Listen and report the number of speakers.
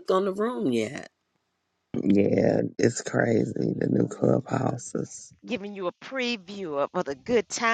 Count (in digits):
3